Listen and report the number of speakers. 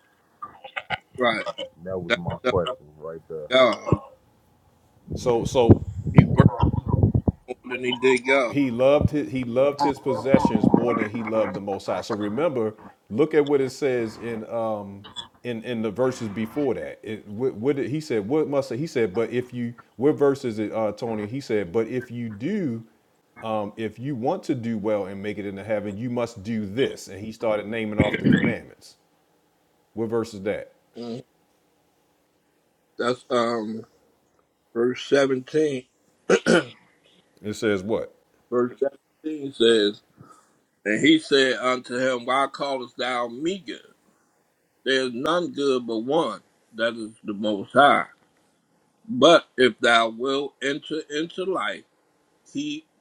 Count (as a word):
three